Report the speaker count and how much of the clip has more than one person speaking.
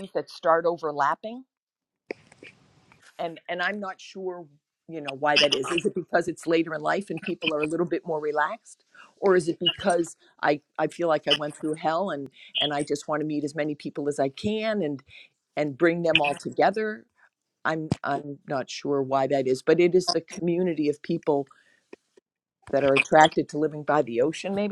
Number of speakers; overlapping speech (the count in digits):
1, no overlap